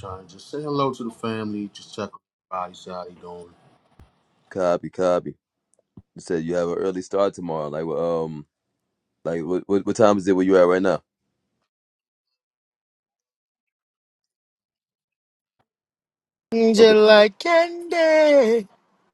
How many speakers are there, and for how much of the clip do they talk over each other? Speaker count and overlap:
3, about 1%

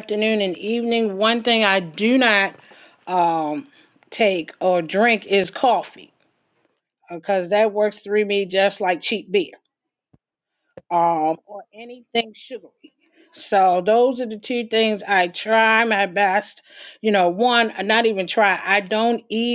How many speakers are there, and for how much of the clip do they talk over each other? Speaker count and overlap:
1, no overlap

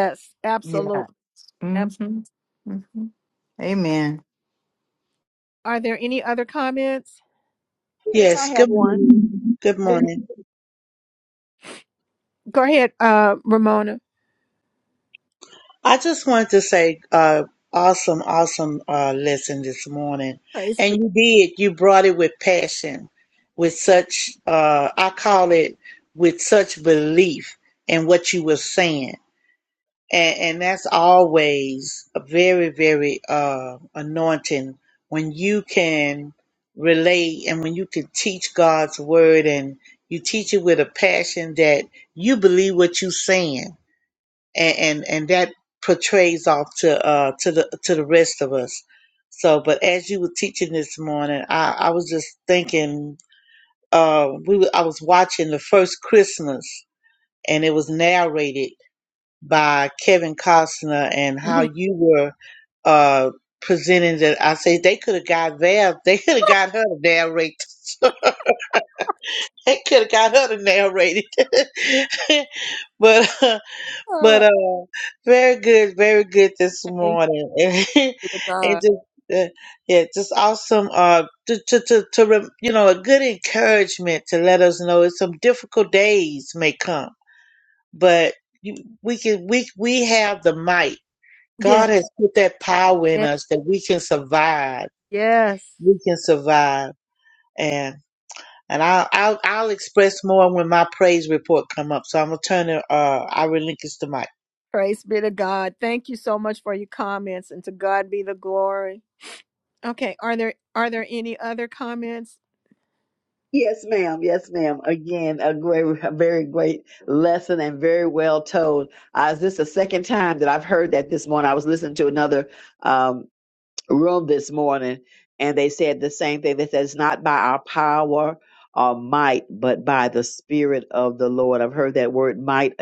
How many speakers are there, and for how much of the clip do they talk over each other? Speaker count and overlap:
4, about 2%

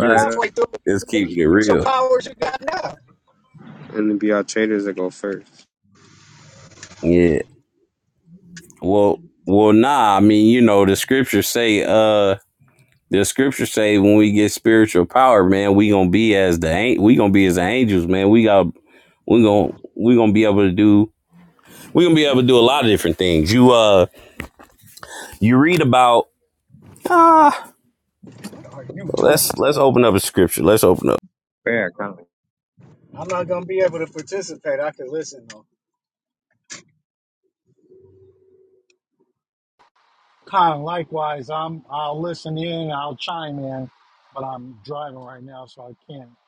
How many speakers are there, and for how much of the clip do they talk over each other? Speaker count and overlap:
4, about 4%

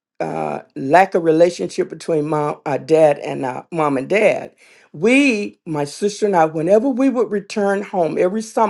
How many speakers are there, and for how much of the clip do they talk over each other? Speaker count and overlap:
1, no overlap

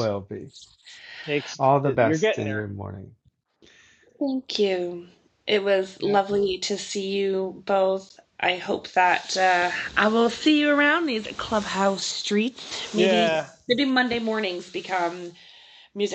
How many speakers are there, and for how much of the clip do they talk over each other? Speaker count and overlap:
3, about 11%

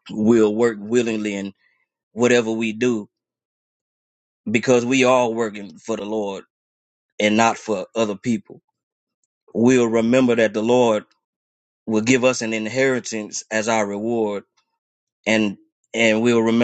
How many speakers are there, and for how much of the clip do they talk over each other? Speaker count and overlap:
1, no overlap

